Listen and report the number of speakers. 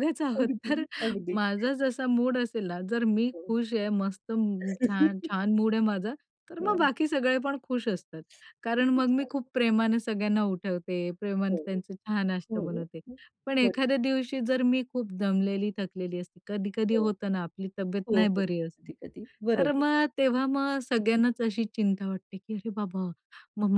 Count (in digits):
2